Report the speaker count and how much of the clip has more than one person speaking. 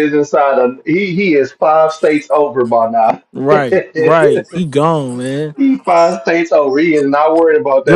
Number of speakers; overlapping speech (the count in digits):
2, about 1%